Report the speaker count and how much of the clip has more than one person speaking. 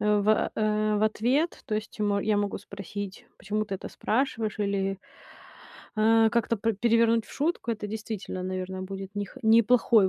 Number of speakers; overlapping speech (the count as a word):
one, no overlap